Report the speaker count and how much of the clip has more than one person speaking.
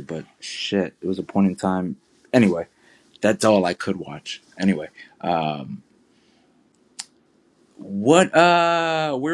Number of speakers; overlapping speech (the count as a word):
one, no overlap